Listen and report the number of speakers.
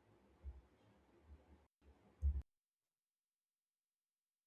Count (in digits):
0